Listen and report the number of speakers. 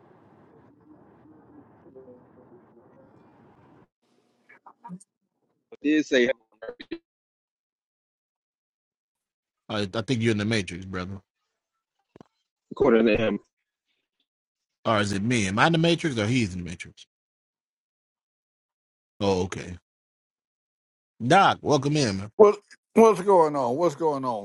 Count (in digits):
3